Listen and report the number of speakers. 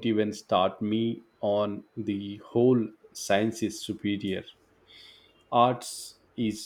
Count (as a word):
one